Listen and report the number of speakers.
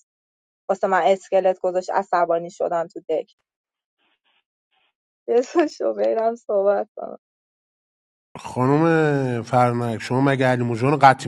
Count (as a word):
two